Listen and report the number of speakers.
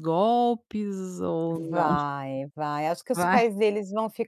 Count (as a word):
two